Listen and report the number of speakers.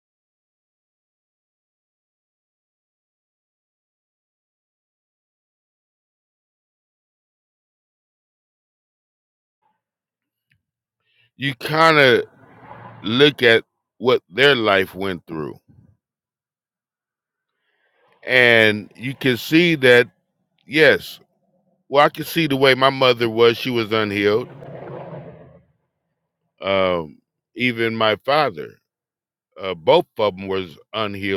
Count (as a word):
one